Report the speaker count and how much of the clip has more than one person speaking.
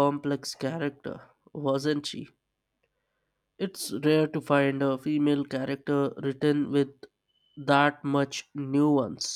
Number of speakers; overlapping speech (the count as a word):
one, no overlap